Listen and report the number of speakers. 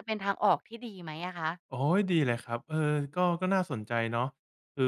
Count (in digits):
2